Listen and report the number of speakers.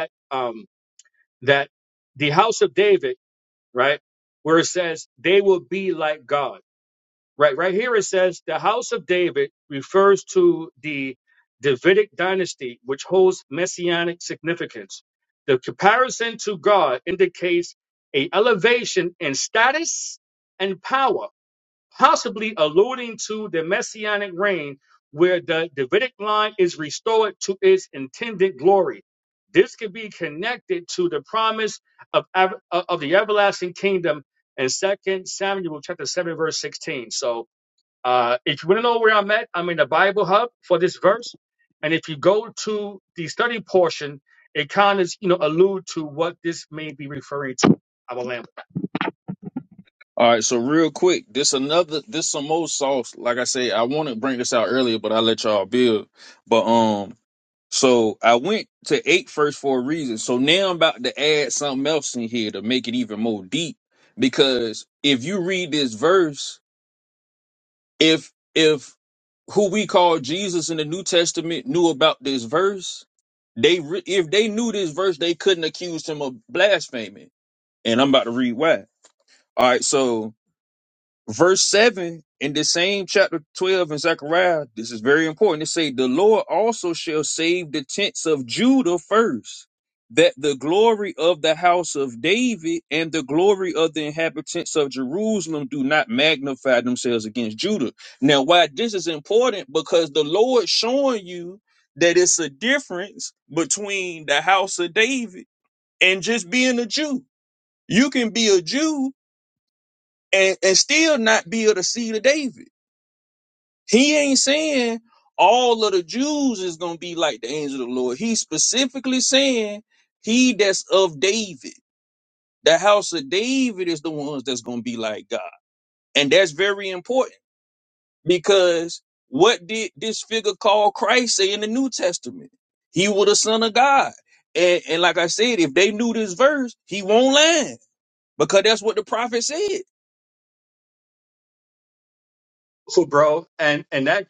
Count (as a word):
two